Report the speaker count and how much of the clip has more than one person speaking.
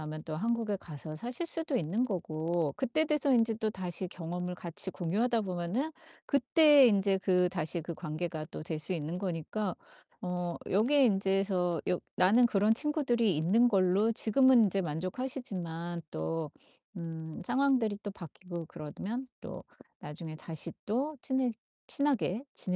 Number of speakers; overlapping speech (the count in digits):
1, no overlap